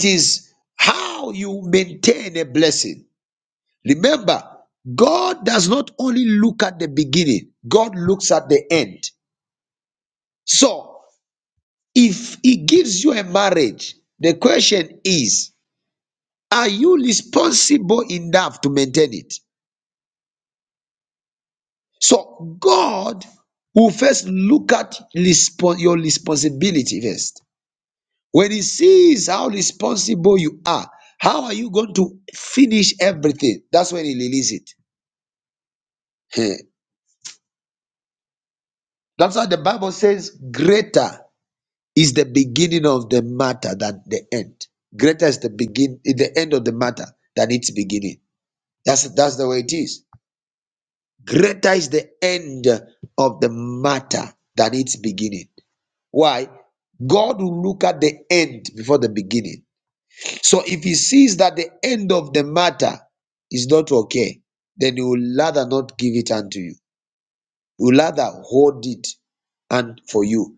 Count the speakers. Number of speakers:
1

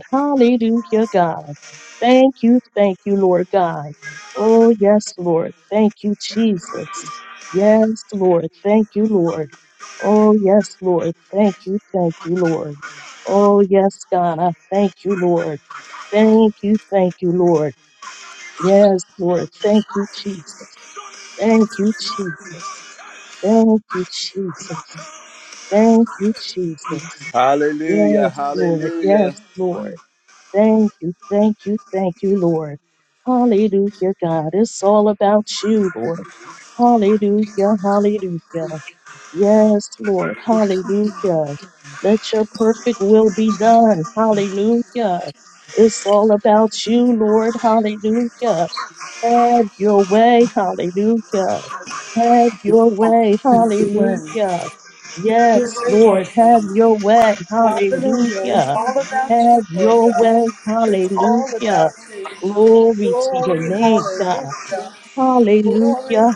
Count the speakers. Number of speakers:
3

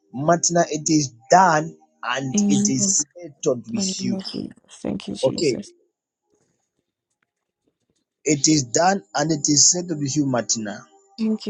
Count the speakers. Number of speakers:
2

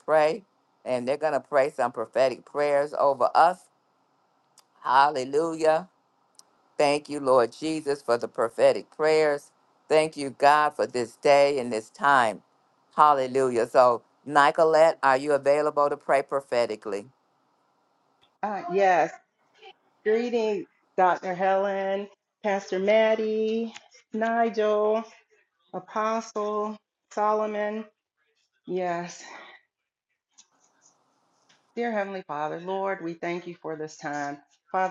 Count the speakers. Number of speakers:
2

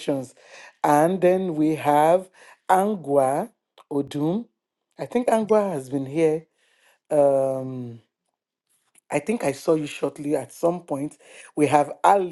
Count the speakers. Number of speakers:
1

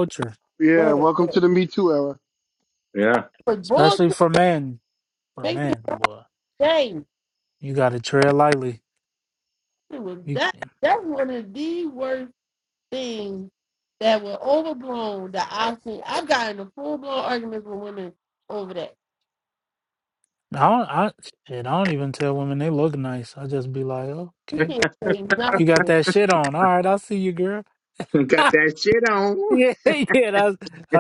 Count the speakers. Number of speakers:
4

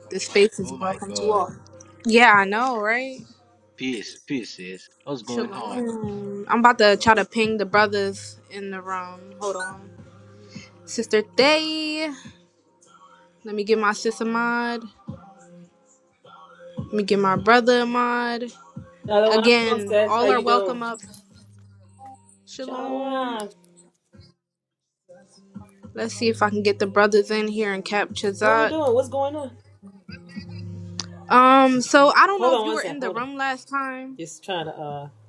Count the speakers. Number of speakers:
3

